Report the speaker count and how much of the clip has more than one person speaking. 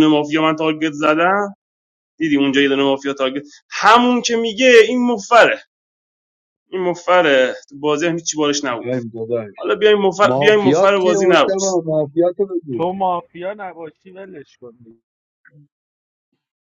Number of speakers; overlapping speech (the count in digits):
3, about 9%